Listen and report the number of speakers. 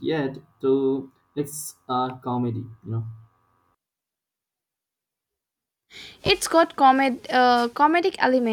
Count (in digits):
2